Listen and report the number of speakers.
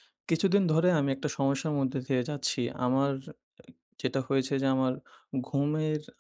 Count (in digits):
1